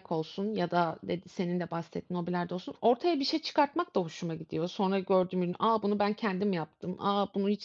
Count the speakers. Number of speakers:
one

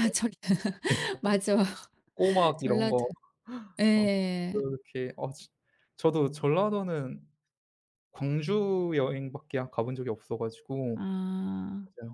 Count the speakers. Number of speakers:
two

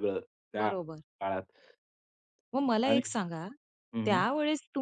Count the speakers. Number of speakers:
two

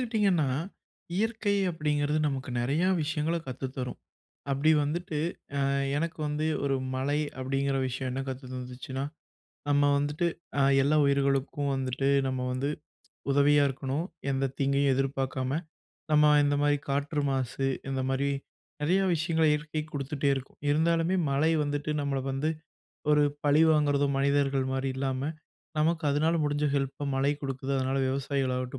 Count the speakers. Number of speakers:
one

